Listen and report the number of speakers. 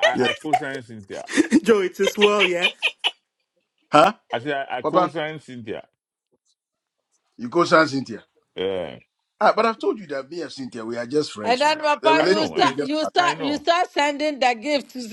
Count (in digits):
4